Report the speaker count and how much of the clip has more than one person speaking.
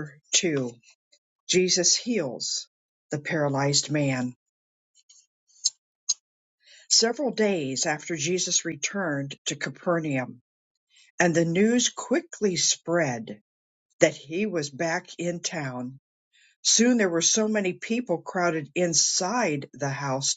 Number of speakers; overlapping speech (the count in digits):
1, no overlap